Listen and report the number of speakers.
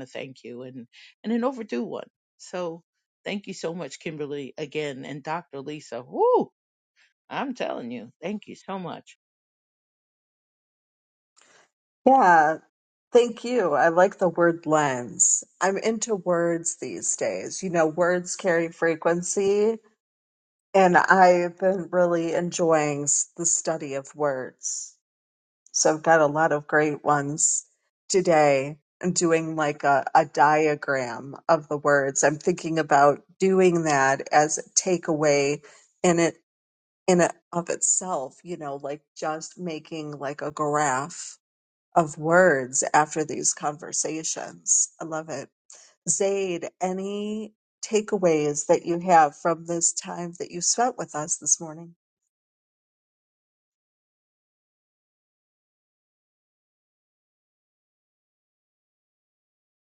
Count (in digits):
2